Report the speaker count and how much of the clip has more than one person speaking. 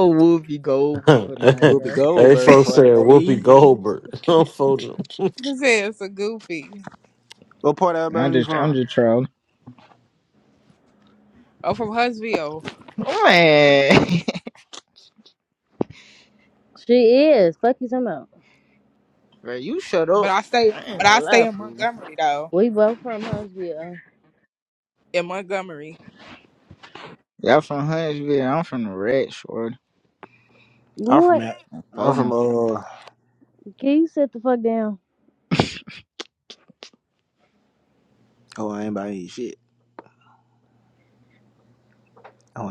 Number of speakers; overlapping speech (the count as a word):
five, about 10%